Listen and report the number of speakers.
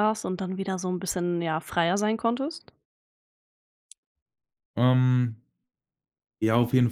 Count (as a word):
two